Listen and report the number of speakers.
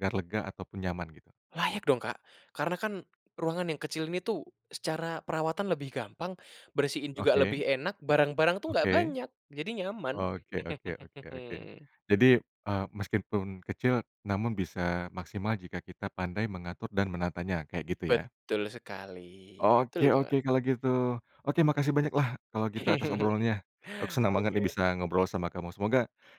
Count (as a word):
two